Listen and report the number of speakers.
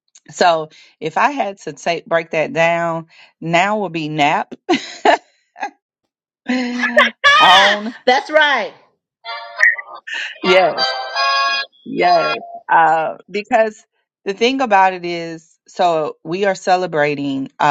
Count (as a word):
two